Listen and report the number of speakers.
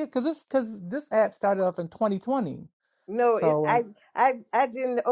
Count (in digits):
2